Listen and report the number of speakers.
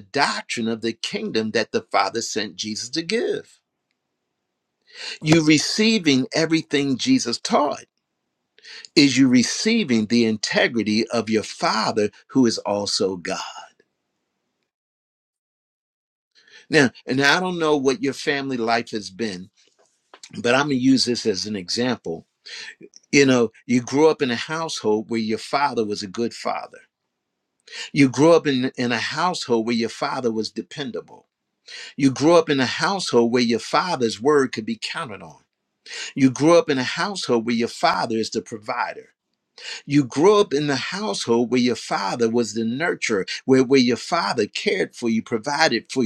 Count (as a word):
one